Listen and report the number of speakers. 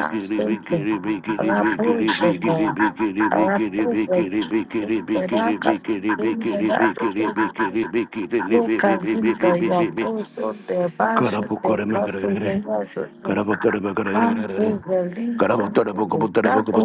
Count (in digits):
2